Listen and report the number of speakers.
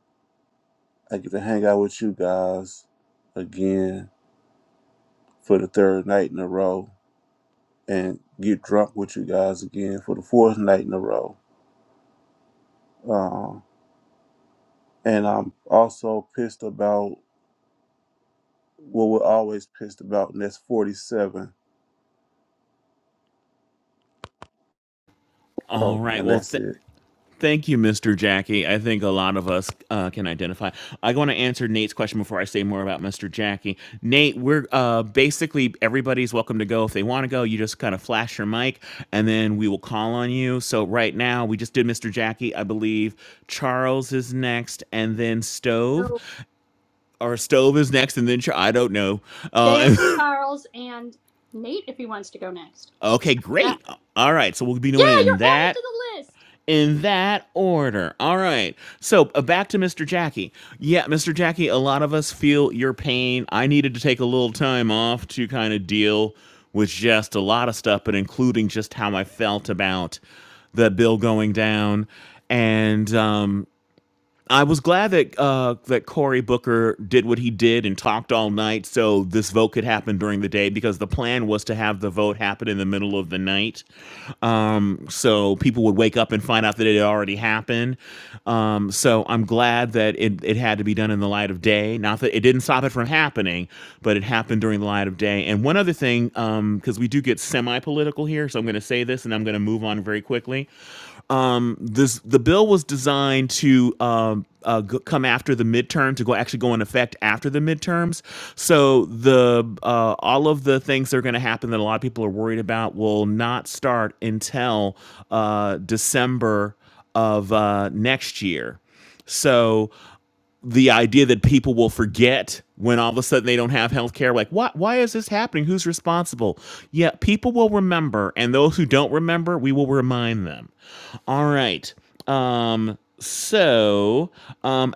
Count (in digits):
3